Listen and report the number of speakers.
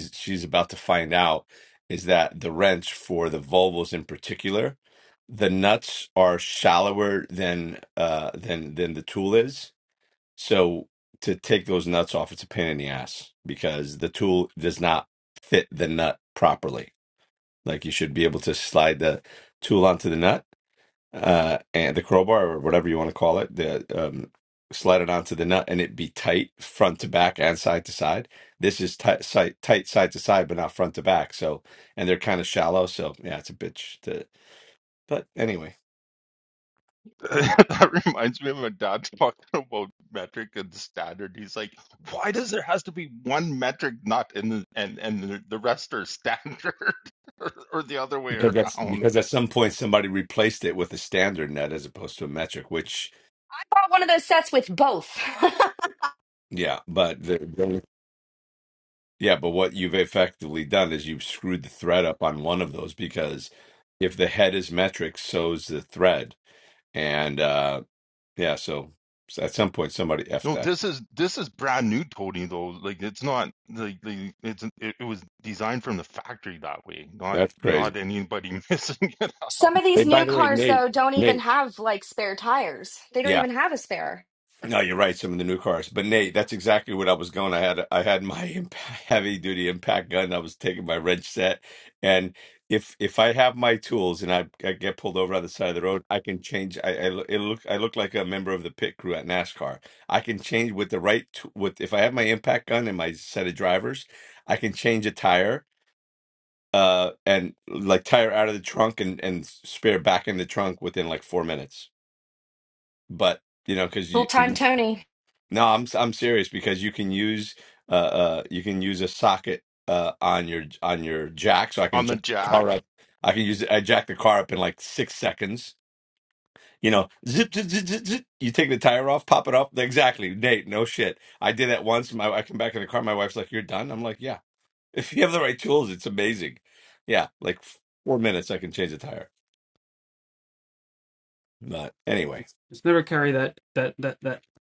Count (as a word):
four